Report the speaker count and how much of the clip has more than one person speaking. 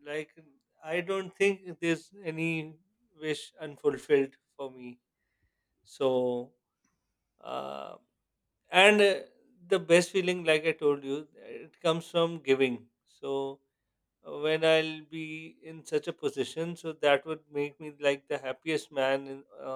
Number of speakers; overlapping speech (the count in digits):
1, no overlap